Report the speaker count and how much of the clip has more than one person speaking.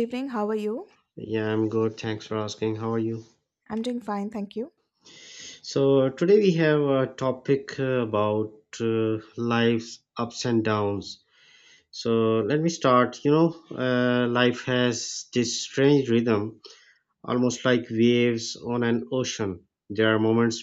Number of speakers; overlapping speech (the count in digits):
2, no overlap